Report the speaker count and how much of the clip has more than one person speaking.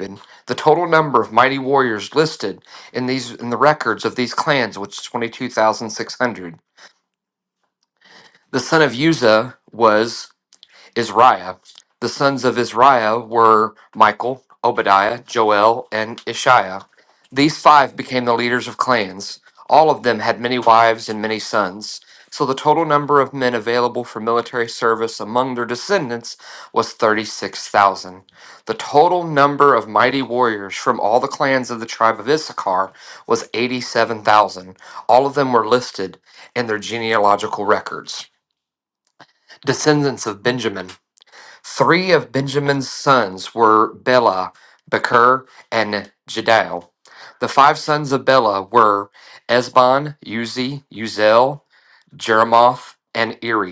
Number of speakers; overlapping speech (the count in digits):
1, no overlap